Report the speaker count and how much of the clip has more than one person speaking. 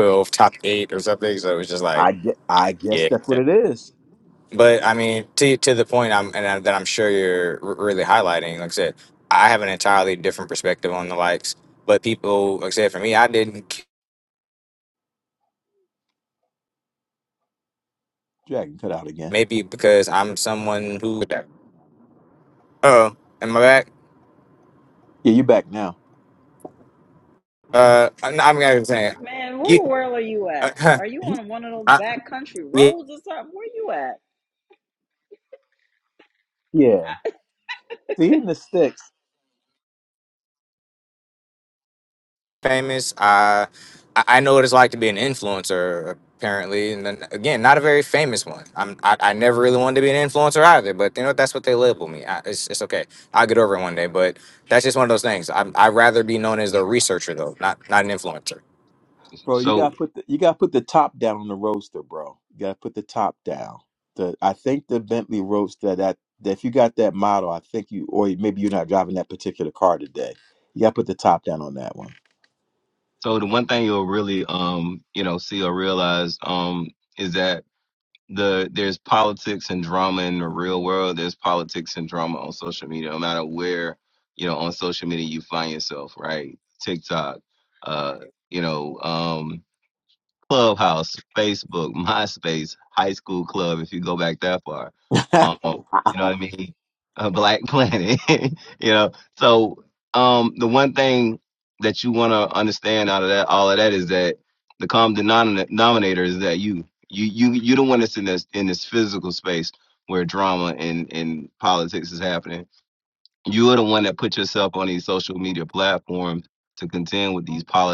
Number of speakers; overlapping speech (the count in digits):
4, about 2%